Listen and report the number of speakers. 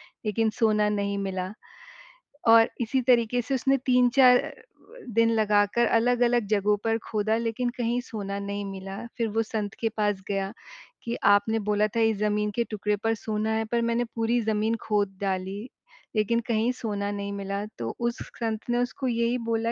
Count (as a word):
one